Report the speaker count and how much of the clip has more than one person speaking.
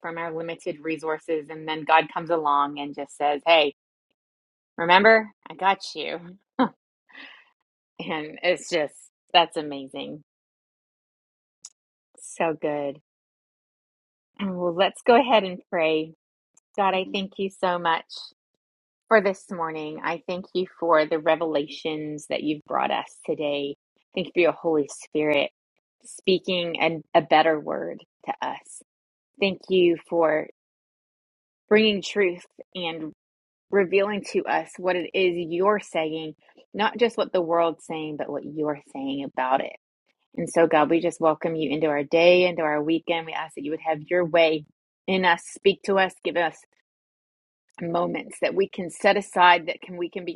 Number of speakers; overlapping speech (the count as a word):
one, no overlap